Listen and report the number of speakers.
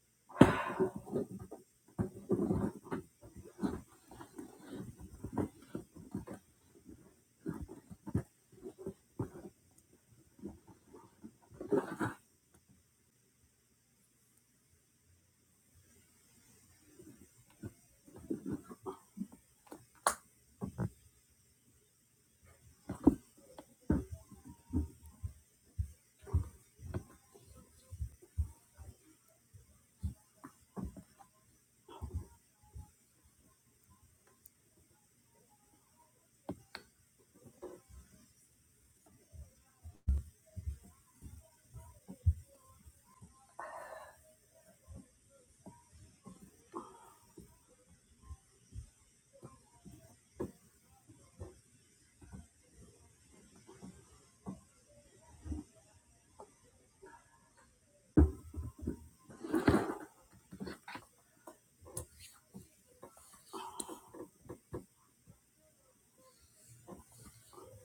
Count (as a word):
zero